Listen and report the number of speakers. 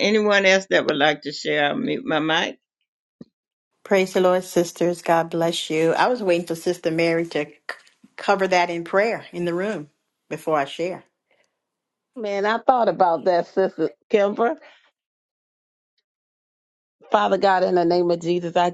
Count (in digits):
3